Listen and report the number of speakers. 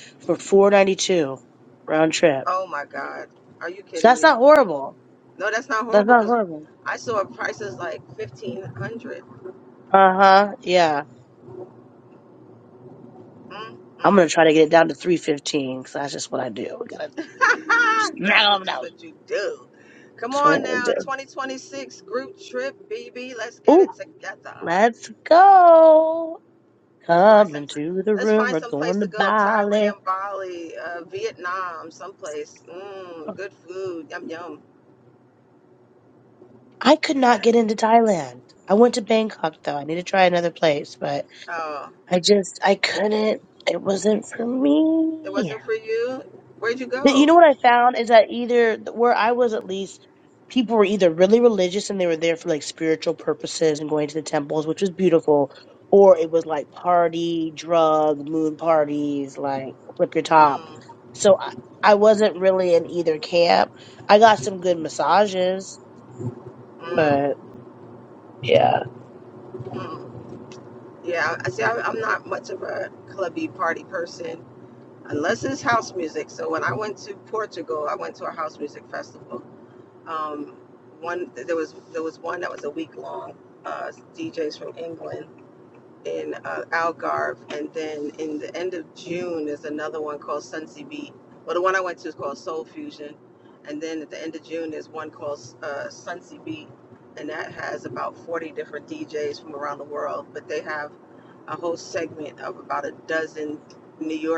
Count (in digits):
2